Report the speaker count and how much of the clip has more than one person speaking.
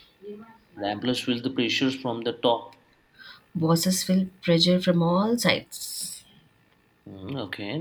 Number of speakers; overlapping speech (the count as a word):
two, no overlap